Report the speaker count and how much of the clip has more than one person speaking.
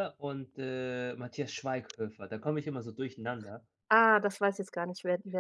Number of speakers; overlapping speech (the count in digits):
2, no overlap